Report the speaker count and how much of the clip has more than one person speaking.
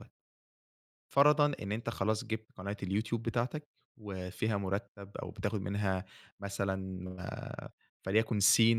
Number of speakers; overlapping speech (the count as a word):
one, no overlap